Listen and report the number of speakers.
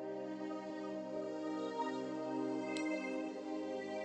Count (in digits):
0